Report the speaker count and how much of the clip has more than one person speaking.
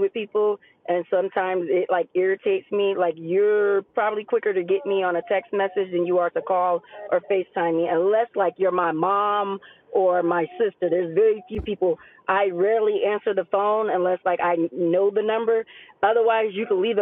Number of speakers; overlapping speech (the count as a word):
one, no overlap